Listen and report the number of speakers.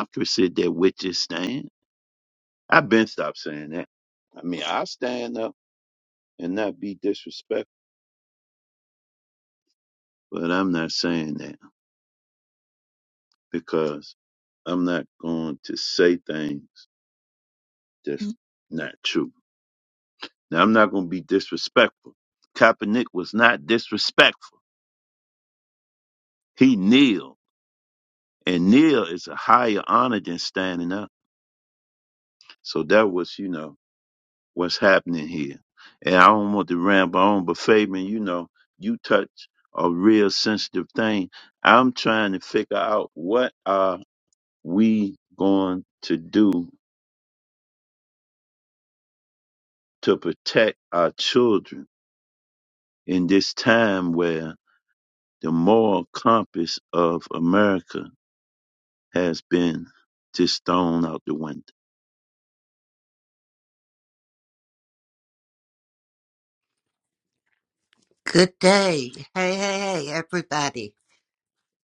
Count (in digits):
2